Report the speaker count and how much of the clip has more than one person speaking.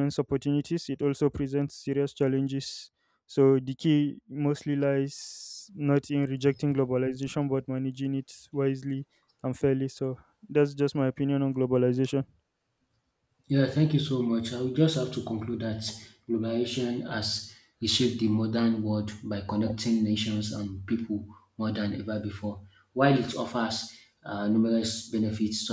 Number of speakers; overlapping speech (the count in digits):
2, no overlap